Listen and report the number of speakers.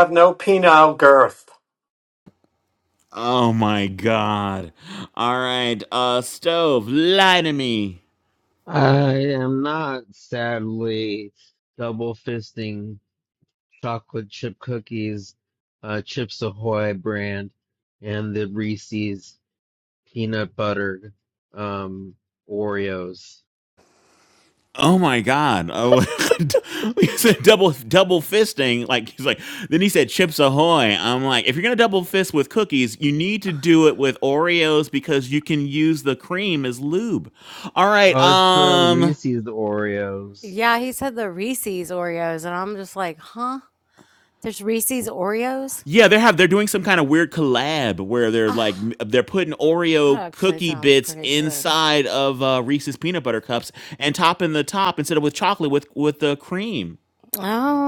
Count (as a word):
four